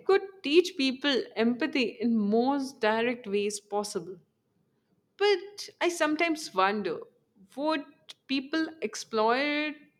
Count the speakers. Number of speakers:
one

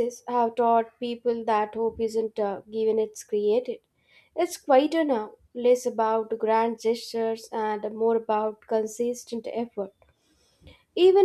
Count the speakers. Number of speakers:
one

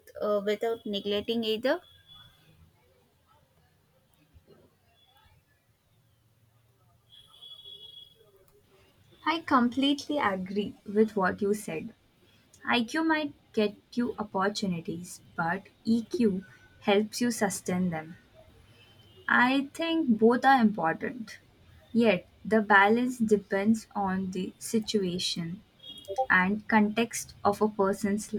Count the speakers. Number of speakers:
two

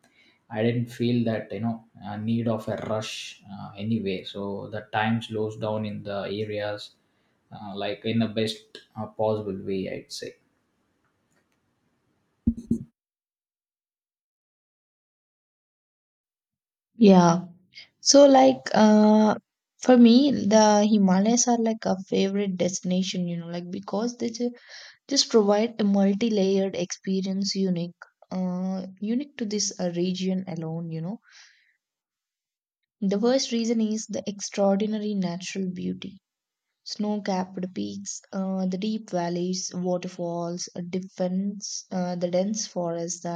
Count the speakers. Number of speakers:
two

